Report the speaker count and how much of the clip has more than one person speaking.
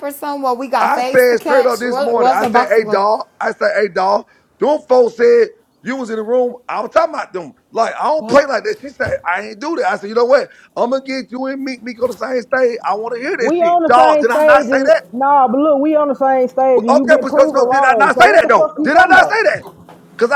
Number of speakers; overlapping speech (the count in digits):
3, about 32%